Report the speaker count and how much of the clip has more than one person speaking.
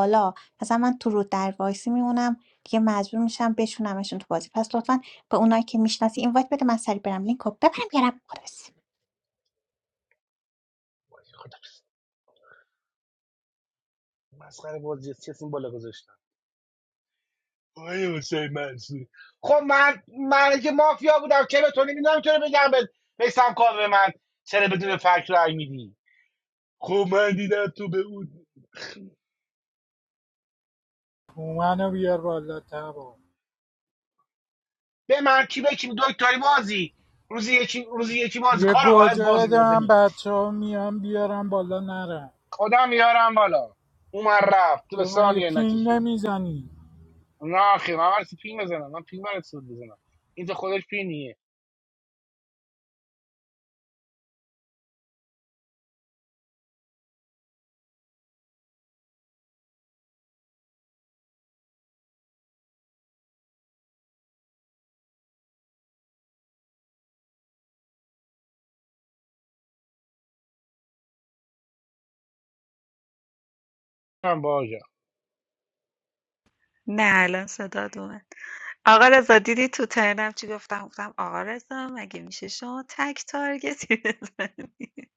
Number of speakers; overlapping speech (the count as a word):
four, about 3%